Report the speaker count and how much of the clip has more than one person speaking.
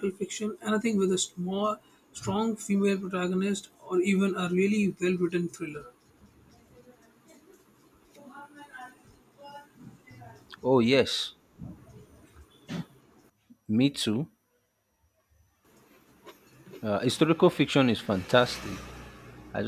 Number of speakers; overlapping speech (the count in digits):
2, no overlap